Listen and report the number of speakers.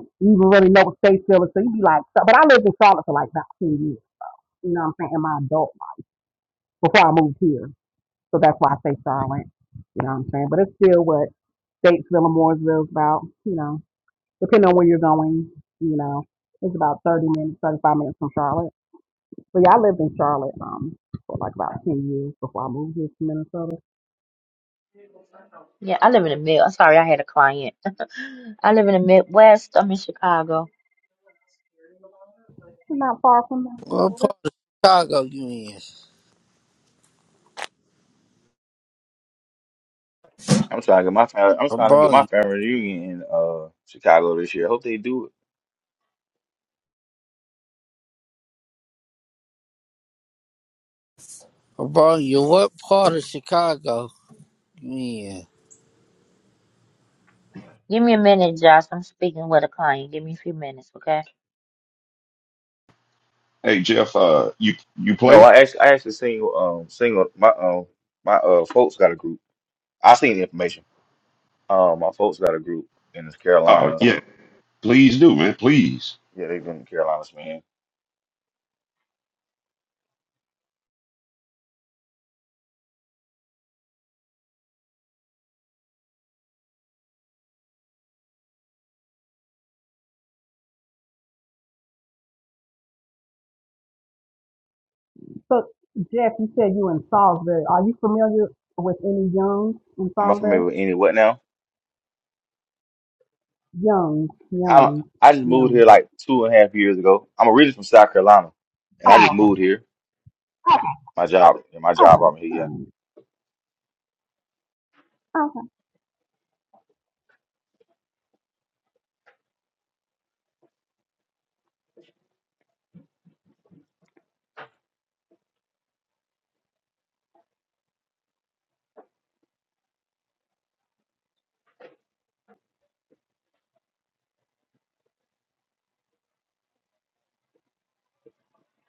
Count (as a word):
five